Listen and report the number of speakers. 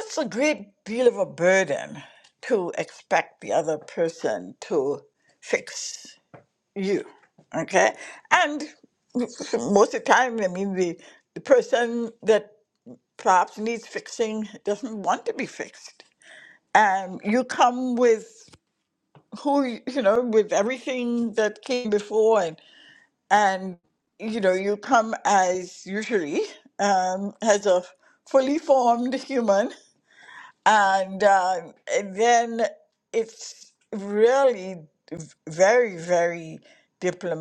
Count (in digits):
1